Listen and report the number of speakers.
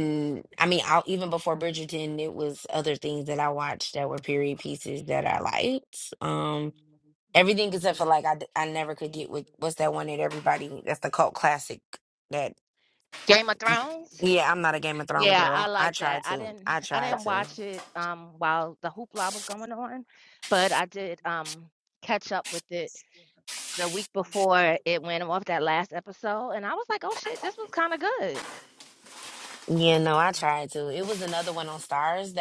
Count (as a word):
two